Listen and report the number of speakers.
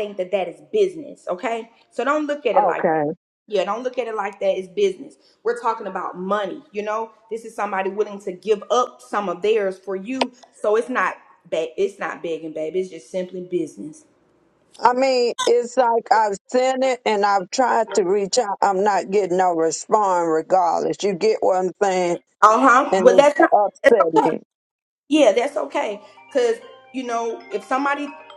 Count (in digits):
2